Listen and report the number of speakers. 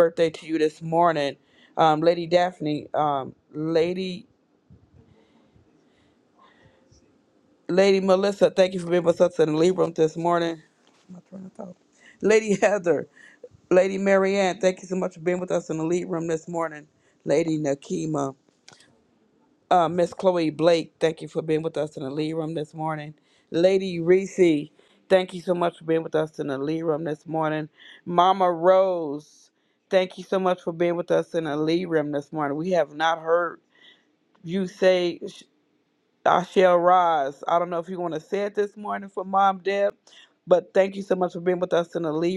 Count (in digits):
1